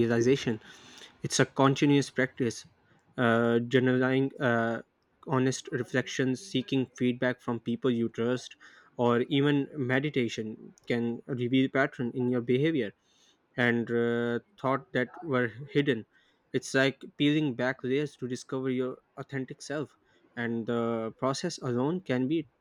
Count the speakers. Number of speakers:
one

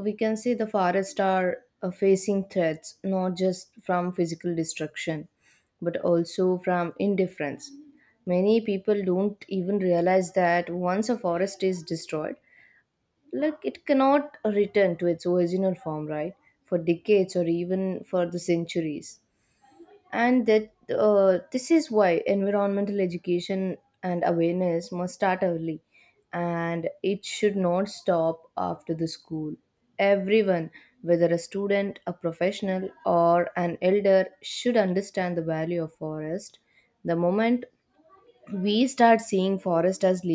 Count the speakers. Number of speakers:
one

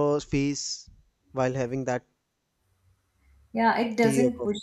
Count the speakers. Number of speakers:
two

